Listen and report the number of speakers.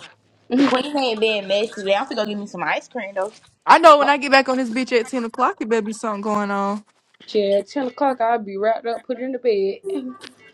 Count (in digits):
3